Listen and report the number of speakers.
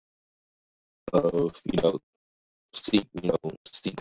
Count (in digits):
1